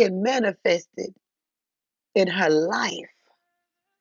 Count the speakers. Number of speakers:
1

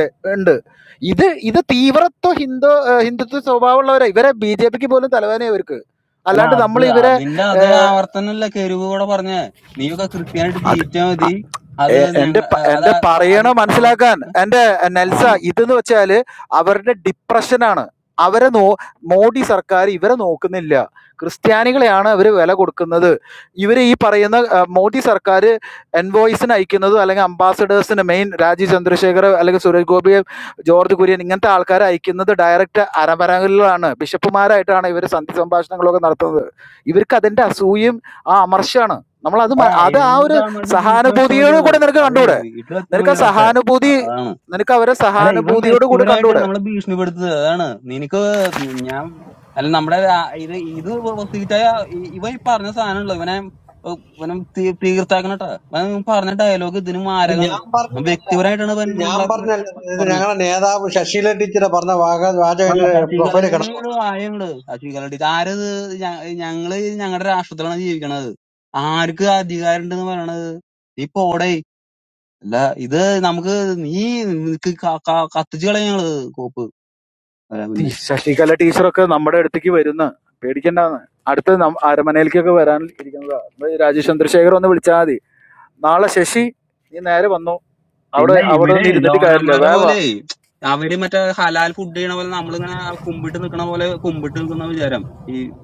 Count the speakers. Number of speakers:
3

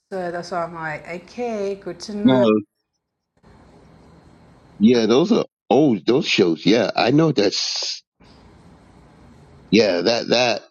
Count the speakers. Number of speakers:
2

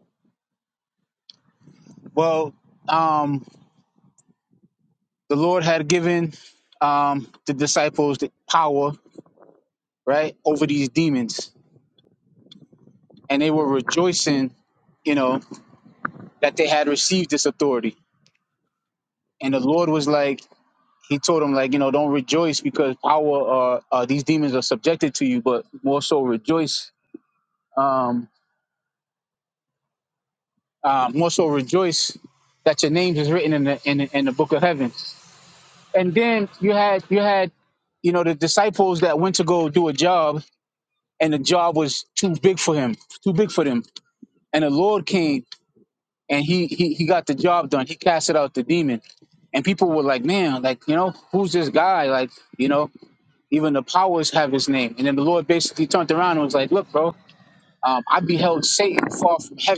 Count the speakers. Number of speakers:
1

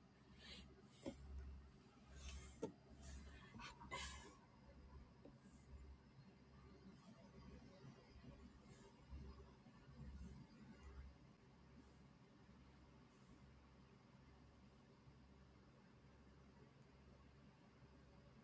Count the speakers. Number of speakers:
0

